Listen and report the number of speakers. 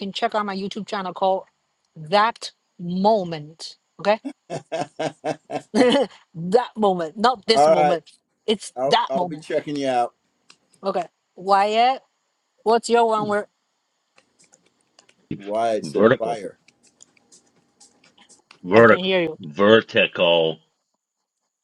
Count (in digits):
3